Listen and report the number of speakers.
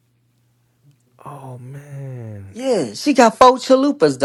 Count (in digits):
2